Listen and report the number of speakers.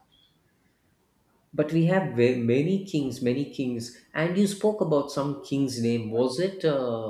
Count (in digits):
1